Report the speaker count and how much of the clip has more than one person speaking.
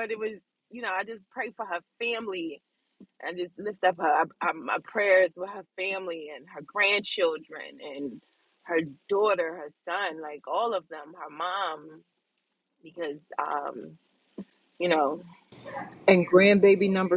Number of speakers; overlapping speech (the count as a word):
two, no overlap